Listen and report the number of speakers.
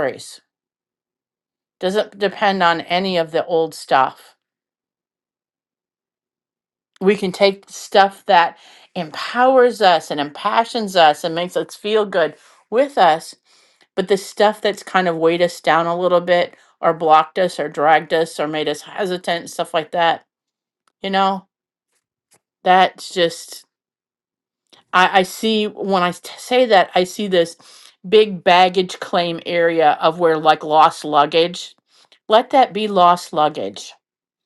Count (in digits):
1